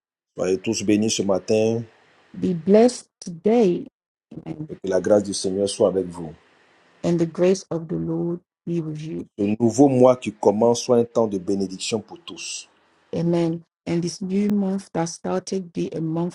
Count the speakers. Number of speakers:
2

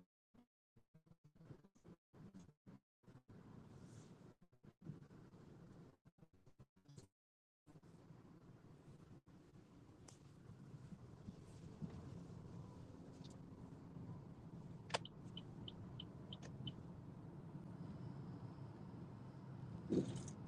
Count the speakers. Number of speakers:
0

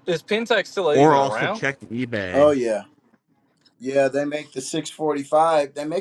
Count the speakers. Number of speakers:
3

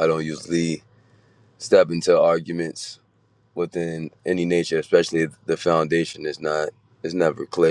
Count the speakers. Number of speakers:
1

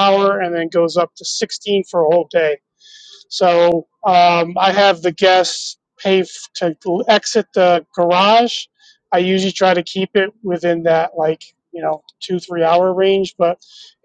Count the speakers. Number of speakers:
1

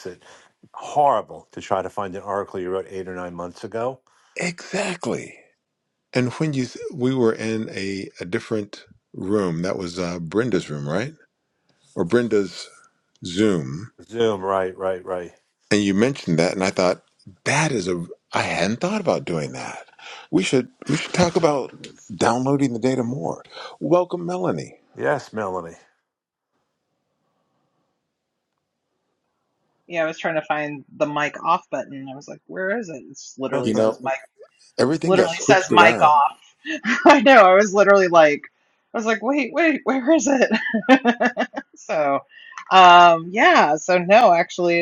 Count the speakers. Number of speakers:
3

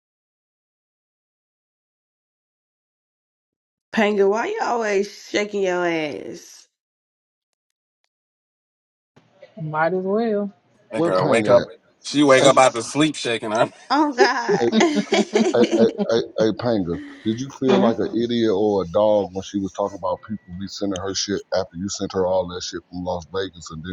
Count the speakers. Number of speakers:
4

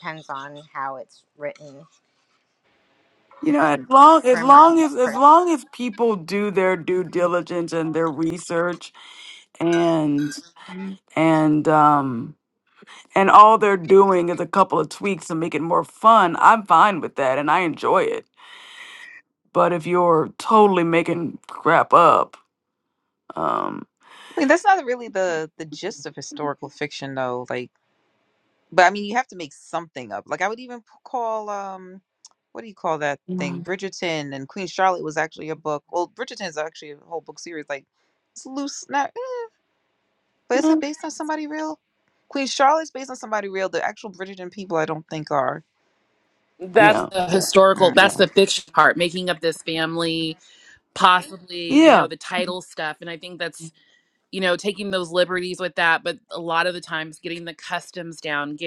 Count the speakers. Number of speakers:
4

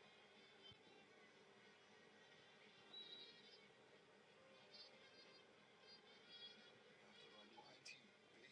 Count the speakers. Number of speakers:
0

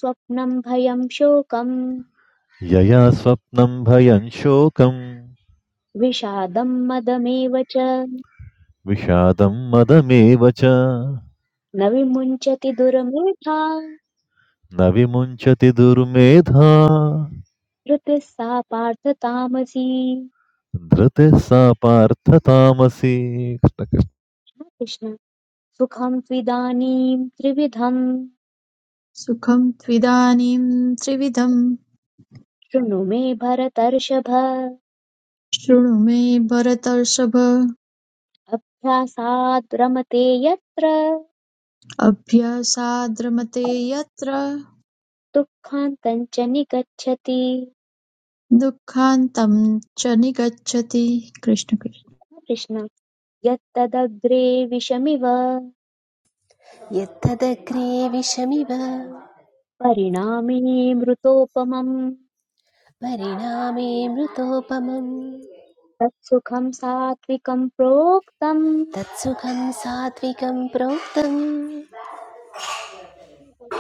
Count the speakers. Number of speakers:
4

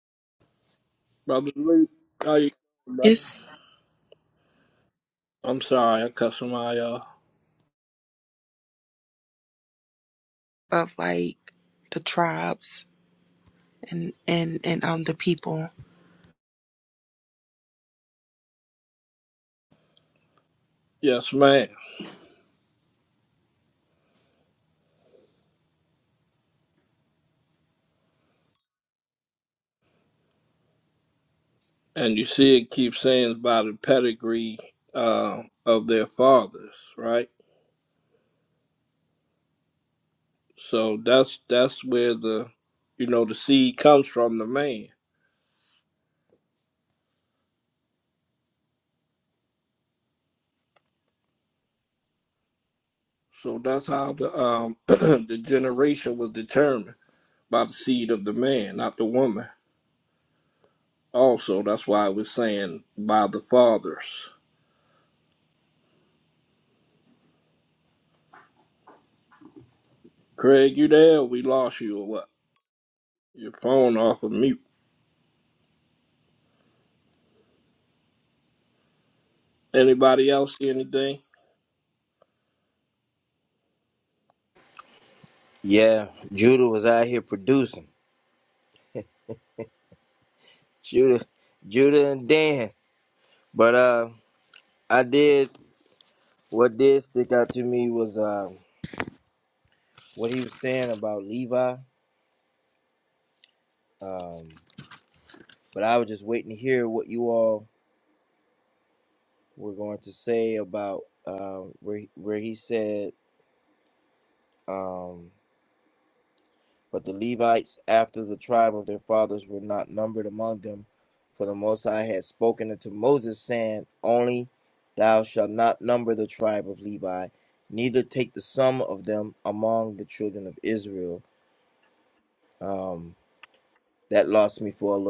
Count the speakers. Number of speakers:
3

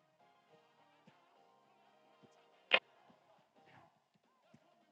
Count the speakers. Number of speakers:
0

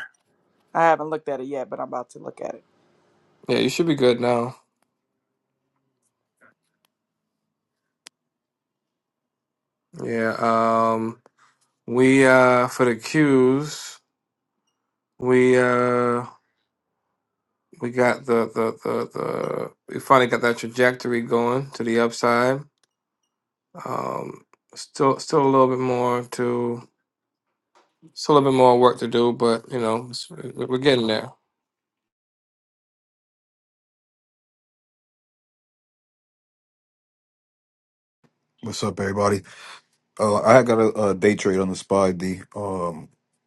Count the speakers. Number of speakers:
3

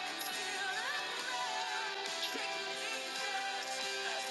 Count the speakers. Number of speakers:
0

